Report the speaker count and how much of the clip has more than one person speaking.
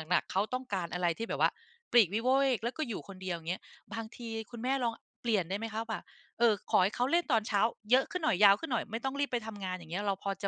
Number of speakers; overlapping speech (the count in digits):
1, no overlap